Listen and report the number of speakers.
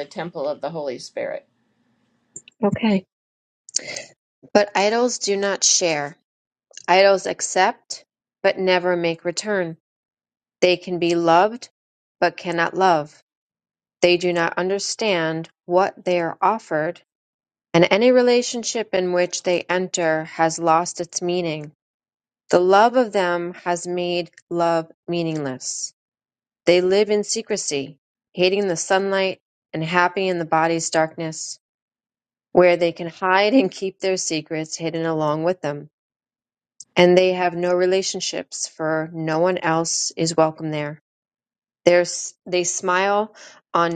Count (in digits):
2